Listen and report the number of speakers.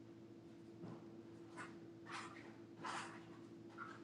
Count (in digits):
0